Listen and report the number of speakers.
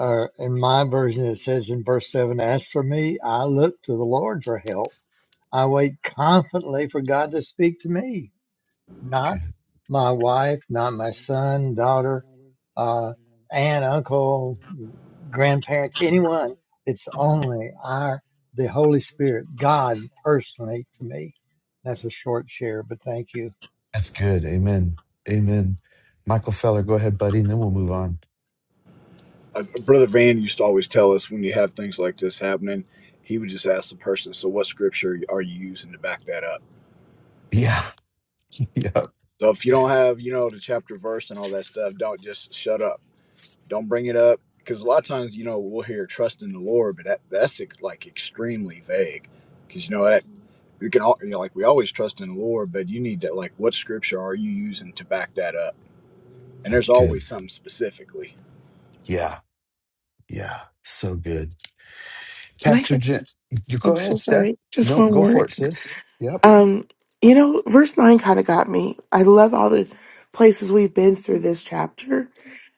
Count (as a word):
four